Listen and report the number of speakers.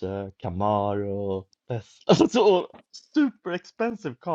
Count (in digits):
1